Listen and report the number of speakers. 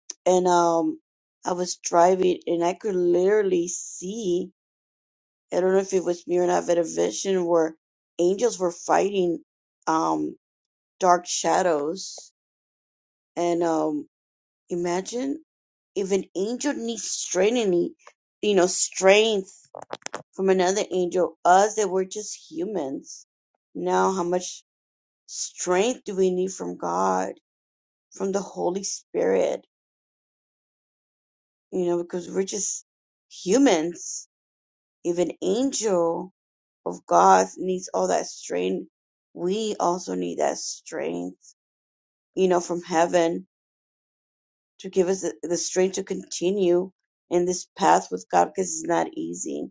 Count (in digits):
1